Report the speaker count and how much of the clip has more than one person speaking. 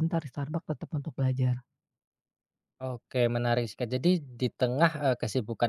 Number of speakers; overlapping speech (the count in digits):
2, no overlap